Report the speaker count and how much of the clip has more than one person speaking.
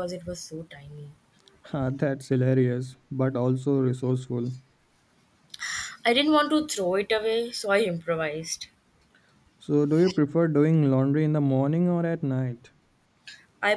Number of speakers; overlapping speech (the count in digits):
2, no overlap